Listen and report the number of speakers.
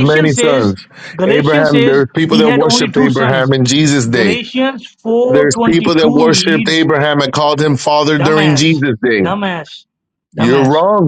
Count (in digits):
2